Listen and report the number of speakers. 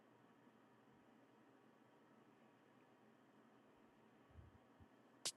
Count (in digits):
0